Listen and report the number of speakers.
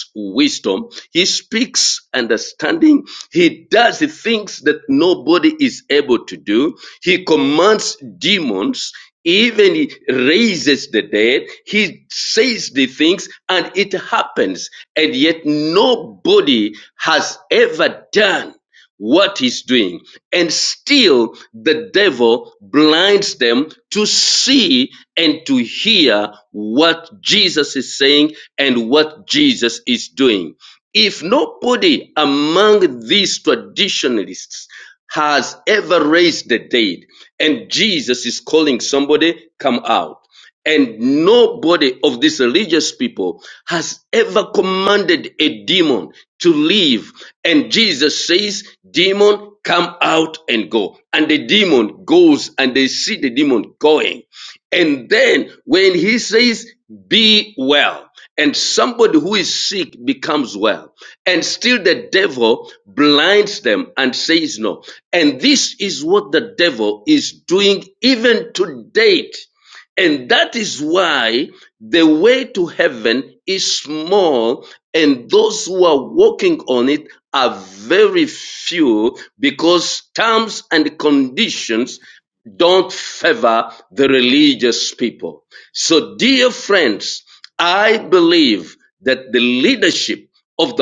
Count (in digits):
1